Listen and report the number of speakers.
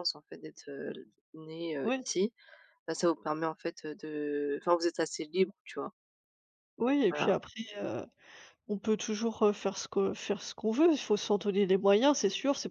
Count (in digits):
2